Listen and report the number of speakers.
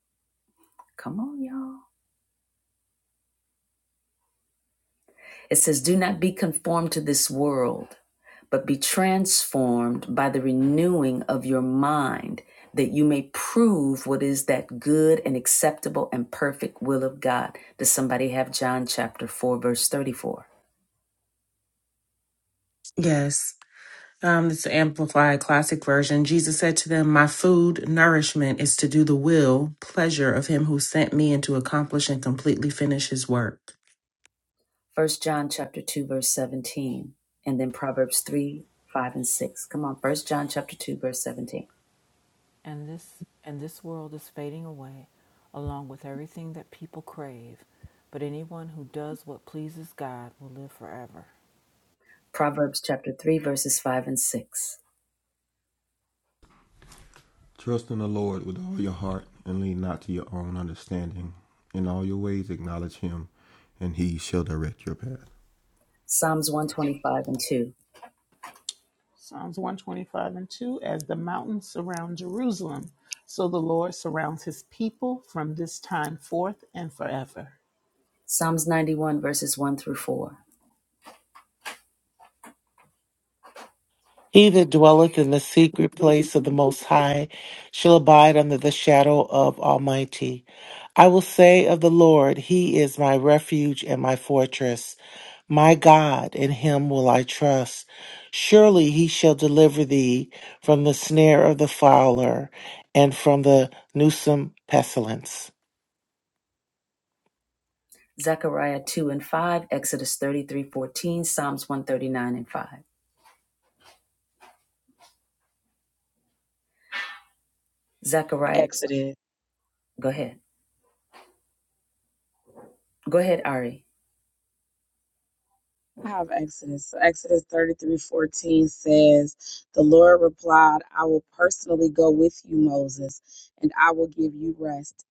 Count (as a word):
seven